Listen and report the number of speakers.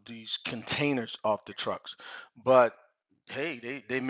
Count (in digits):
1